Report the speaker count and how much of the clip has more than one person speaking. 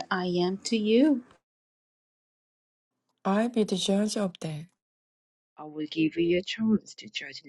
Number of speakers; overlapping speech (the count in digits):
3, no overlap